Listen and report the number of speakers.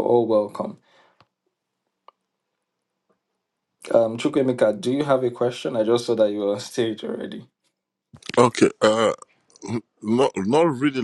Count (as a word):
two